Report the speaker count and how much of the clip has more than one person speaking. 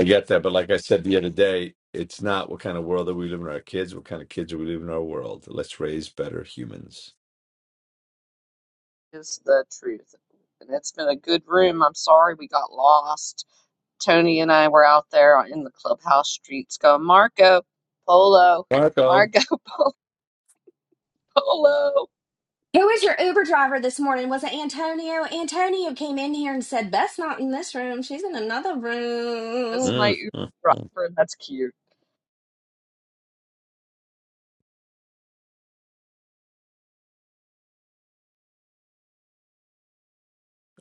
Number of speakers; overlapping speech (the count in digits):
3, about 2%